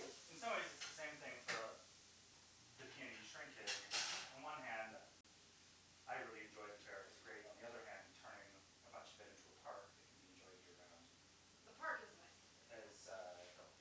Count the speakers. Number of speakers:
2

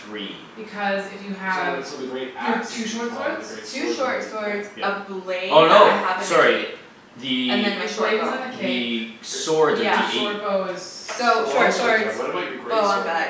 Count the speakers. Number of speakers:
4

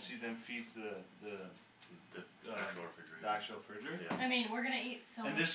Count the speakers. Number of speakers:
3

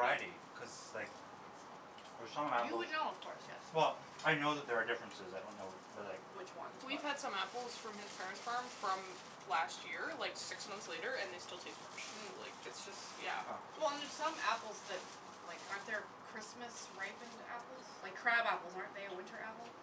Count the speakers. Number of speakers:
3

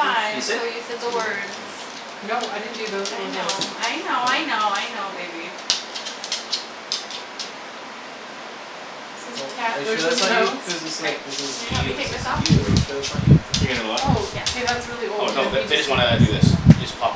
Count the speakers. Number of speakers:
4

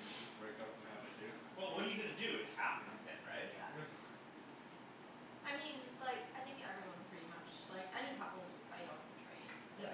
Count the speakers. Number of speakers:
3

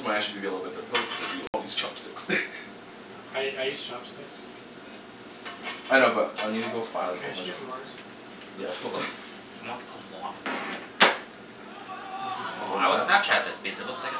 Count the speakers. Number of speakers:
3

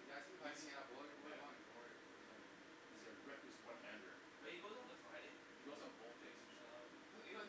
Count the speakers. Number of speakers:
3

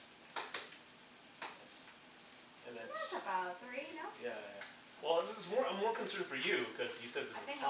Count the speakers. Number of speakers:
2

